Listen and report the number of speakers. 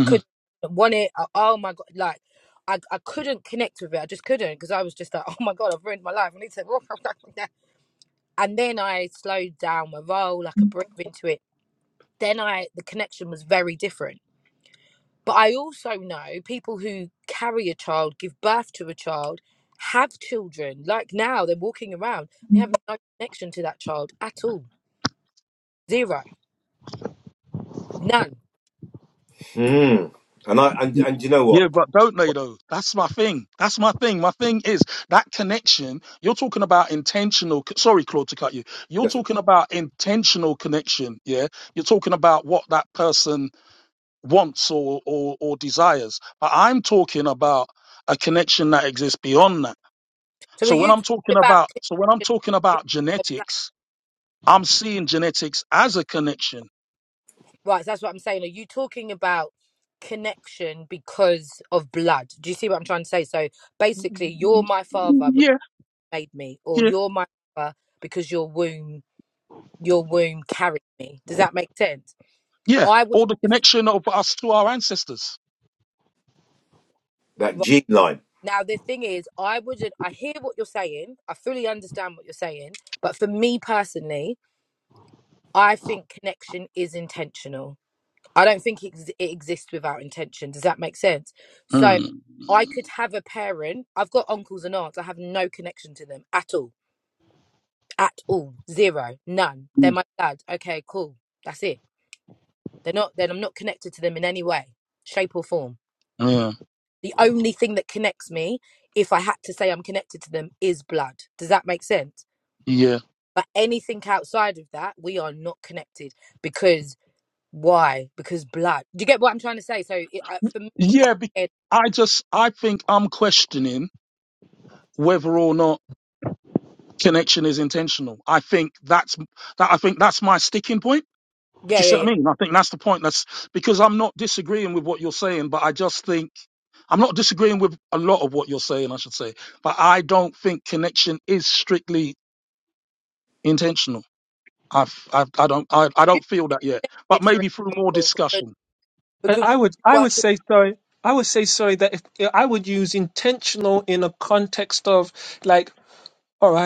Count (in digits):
4